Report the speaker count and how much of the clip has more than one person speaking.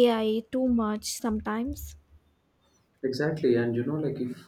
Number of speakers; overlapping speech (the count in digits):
2, no overlap